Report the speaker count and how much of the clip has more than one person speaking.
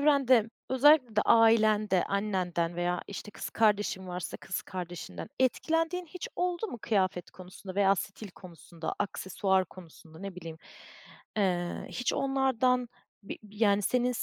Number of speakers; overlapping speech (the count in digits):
1, no overlap